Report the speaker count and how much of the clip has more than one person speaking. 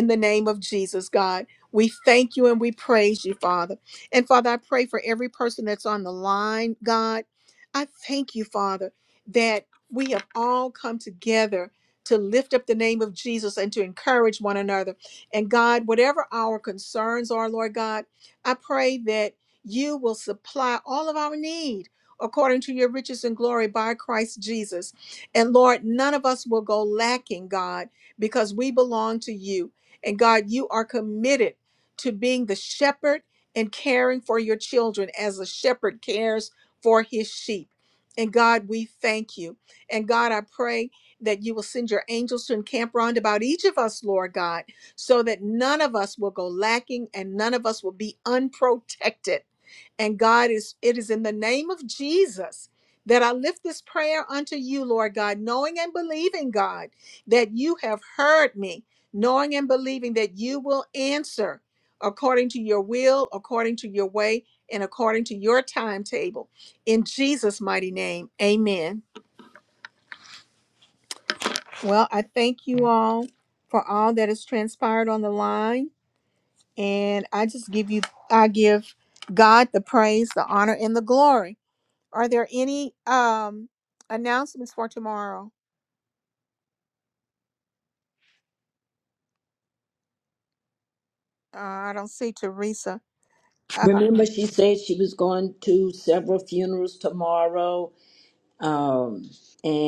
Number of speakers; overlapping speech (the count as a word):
two, under 1%